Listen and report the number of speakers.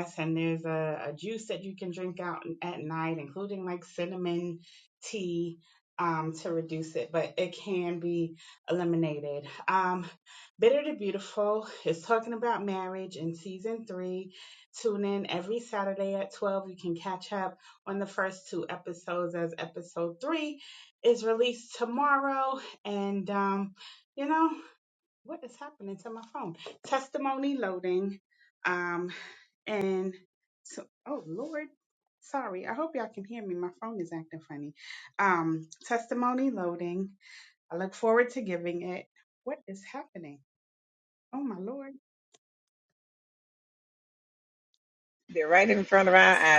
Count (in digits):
2